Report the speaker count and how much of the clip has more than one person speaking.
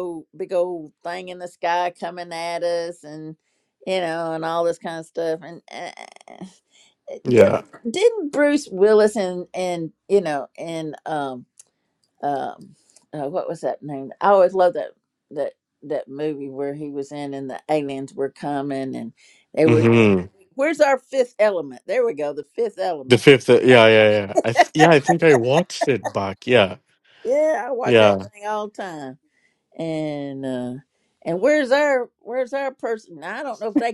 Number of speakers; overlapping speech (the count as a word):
two, about 3%